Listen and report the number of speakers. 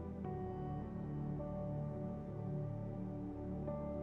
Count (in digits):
0